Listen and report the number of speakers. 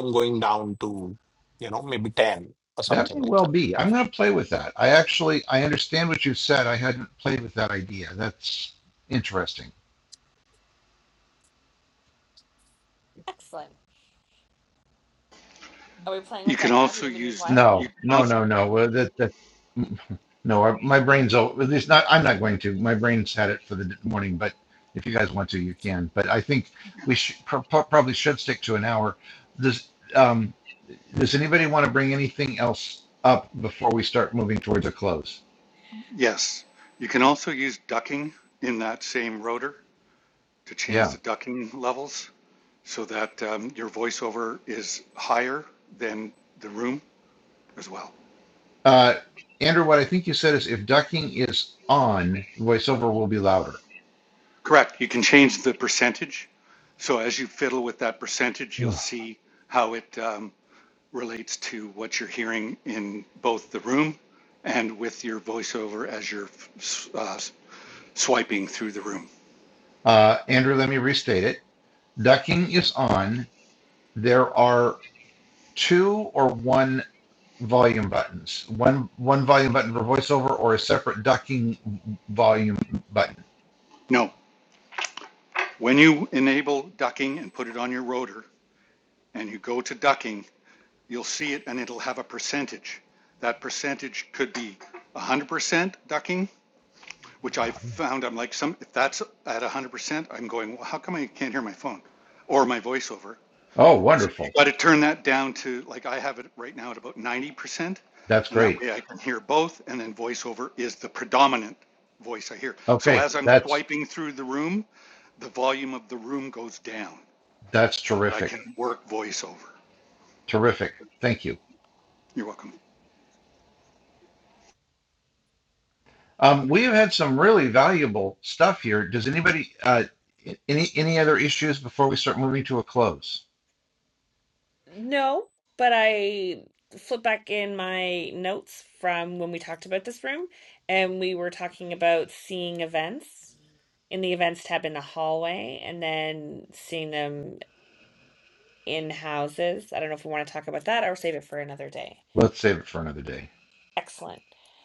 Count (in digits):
4